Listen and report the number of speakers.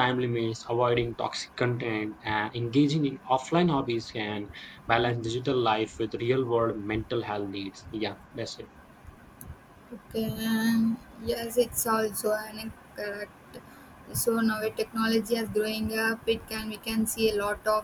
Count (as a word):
two